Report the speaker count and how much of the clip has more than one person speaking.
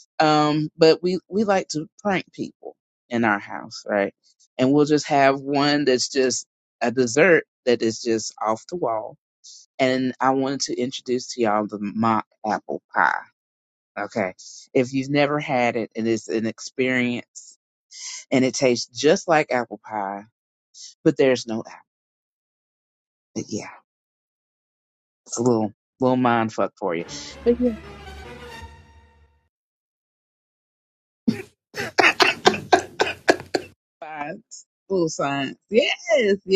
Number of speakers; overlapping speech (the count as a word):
one, no overlap